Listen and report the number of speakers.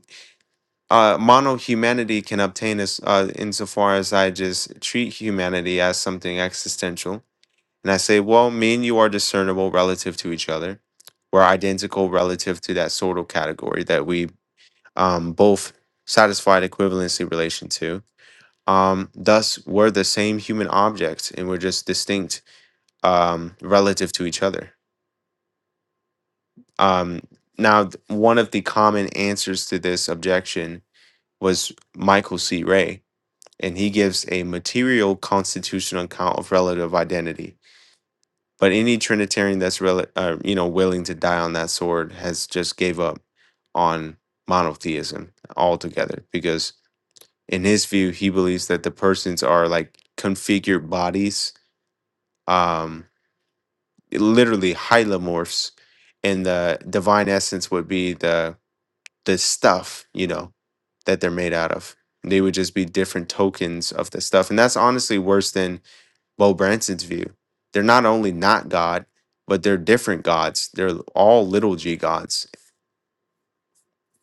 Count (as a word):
one